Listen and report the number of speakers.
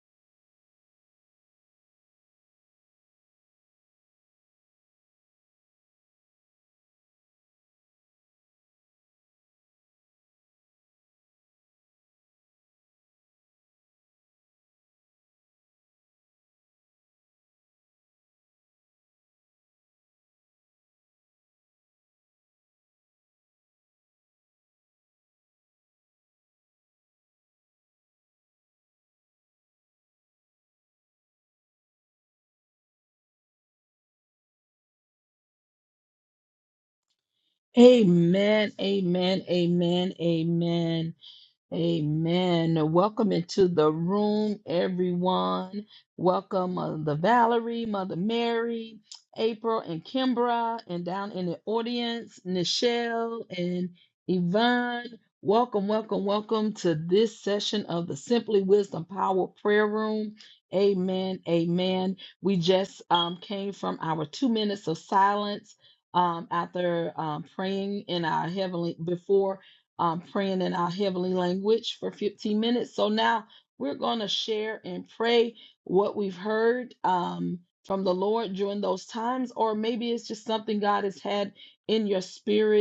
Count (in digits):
1